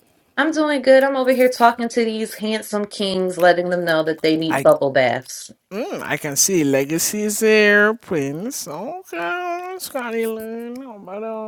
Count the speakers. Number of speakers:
two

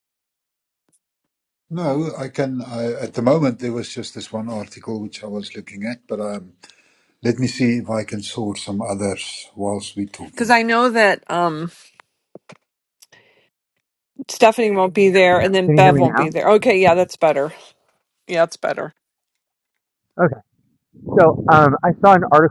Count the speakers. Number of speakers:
three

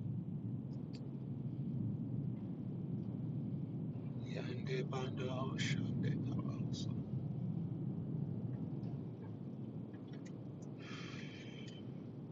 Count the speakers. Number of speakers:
zero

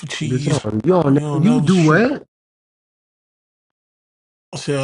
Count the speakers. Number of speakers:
two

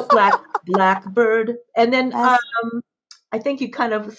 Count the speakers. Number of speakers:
one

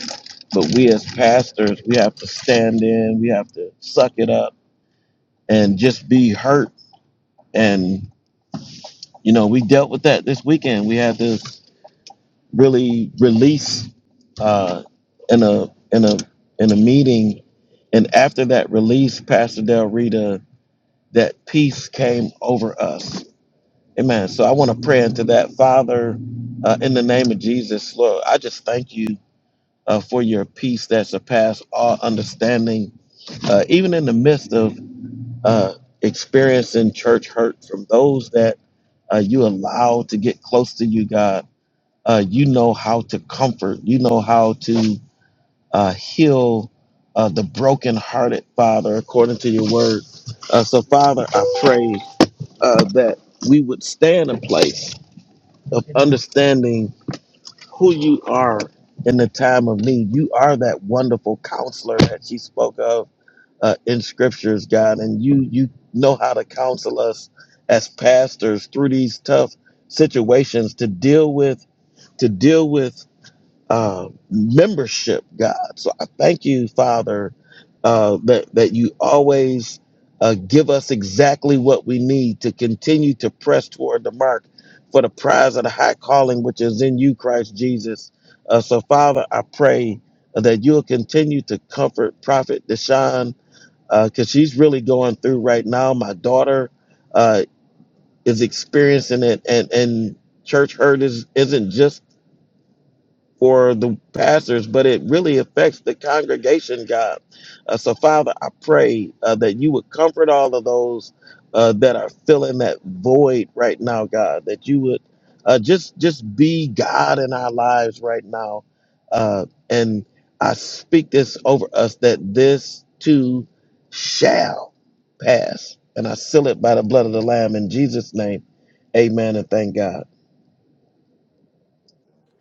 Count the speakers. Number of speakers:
one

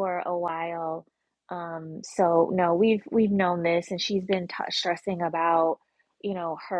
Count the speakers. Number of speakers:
one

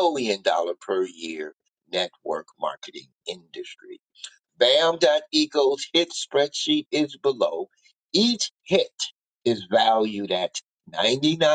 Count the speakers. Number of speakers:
one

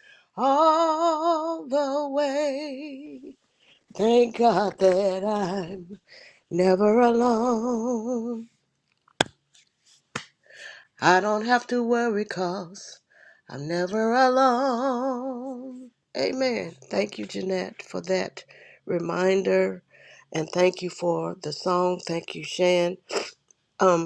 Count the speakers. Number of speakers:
one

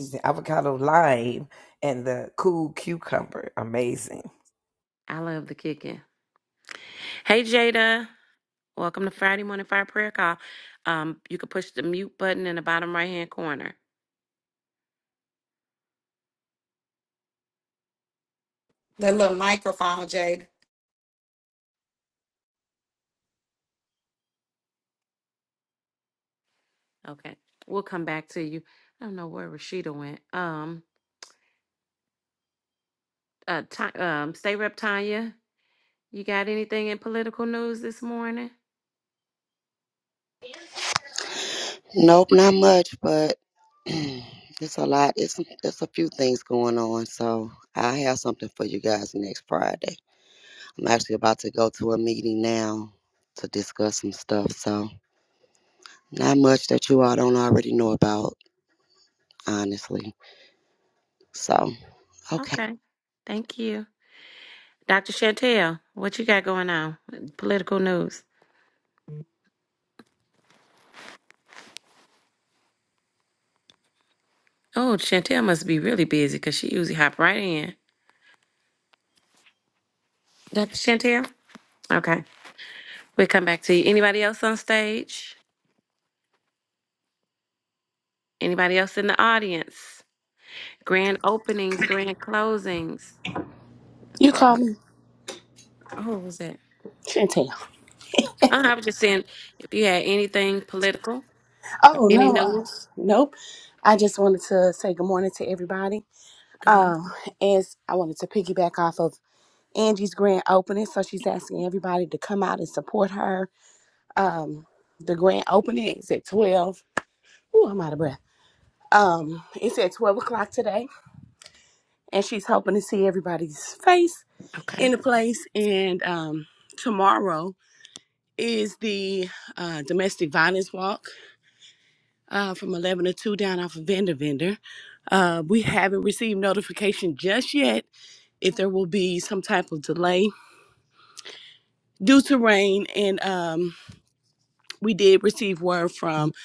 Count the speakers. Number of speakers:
five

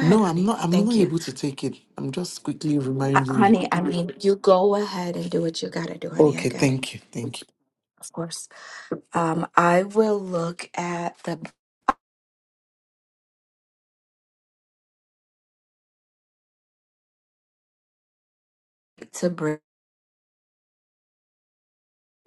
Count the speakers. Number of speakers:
two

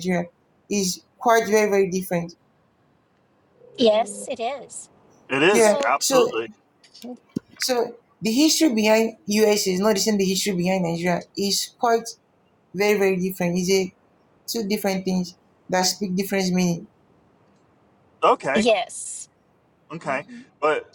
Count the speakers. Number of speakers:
three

